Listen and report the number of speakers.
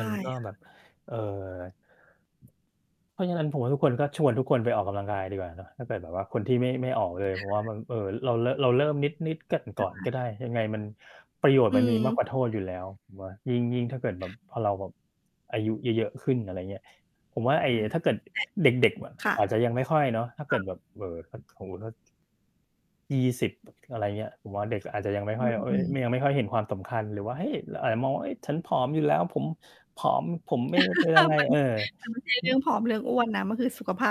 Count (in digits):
2